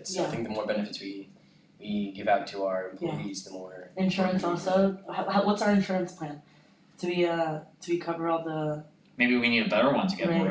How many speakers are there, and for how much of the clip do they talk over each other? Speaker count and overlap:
3, about 16%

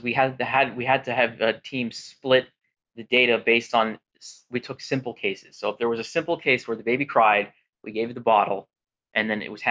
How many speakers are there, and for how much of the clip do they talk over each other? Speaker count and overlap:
1, no overlap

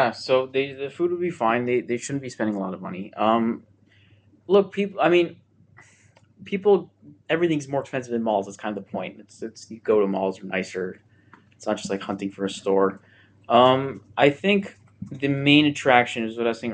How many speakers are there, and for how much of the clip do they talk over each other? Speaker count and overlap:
1, no overlap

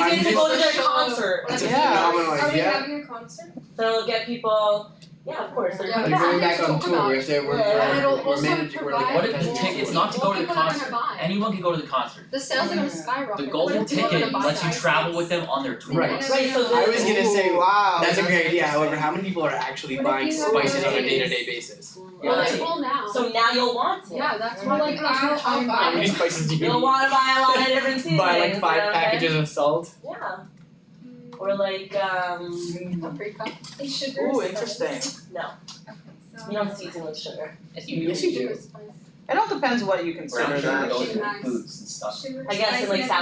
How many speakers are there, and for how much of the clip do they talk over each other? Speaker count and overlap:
6, about 55%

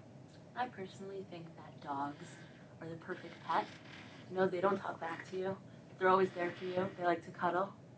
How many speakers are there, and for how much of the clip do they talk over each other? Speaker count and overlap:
1, no overlap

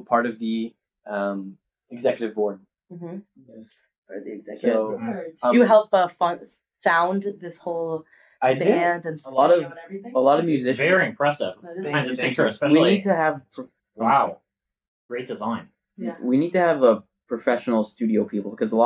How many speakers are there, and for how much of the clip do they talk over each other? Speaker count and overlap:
4, about 26%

